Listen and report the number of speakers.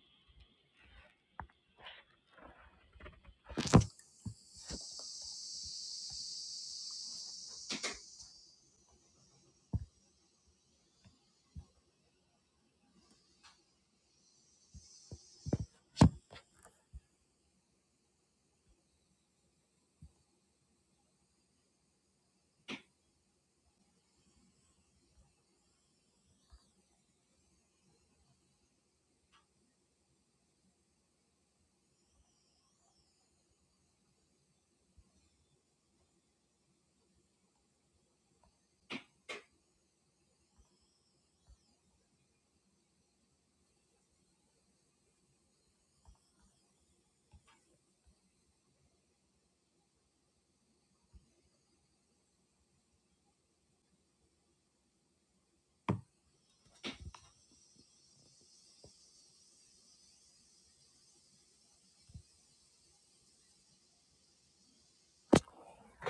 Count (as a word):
zero